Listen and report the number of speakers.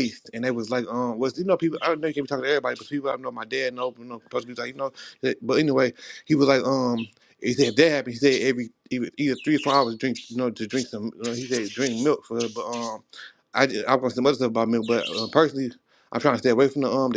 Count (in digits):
1